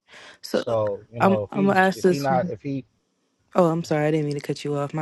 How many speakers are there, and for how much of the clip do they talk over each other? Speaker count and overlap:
2, about 24%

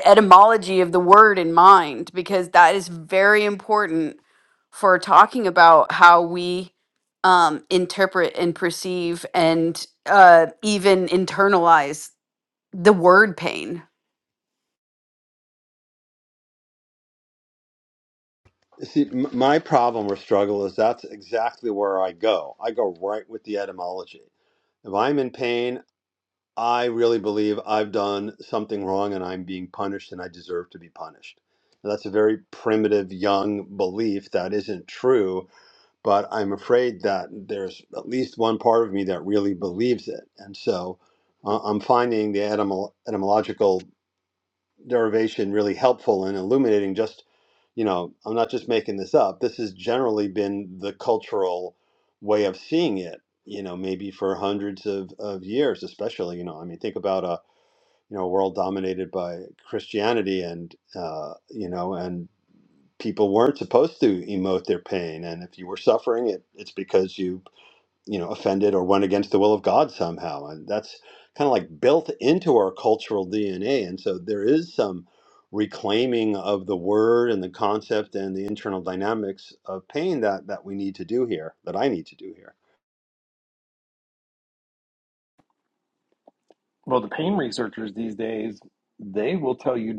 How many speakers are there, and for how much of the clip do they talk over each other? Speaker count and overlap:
3, no overlap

